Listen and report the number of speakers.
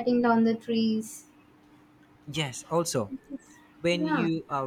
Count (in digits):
2